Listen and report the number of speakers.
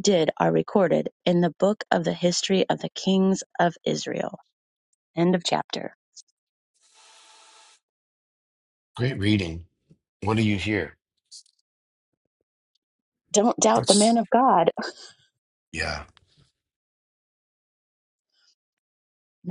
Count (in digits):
2